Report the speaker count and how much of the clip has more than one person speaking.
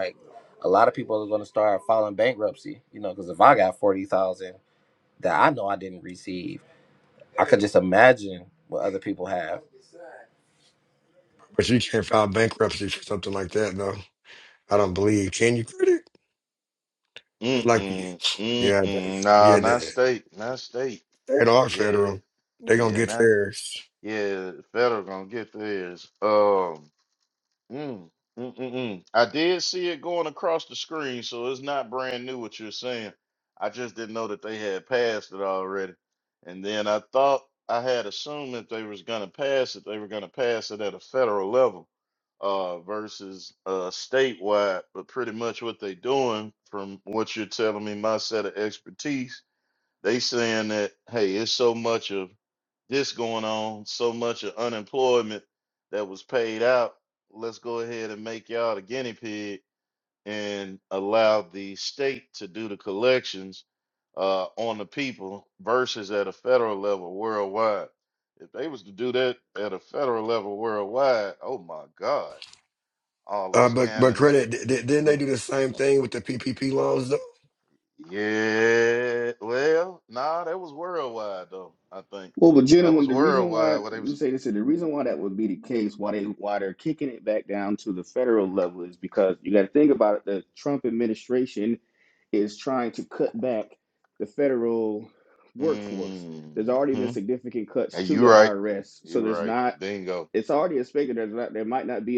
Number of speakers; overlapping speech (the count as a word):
four, about 7%